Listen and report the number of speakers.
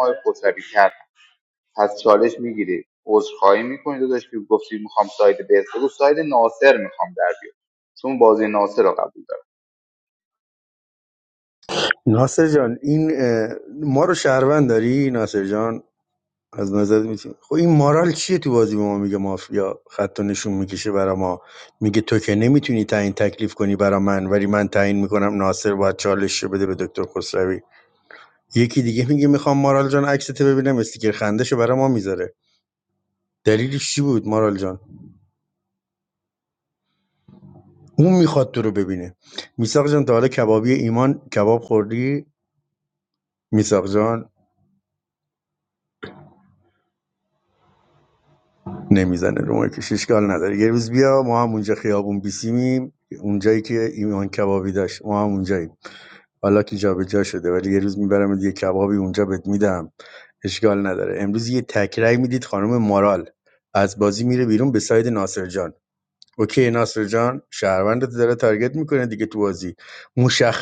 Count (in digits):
2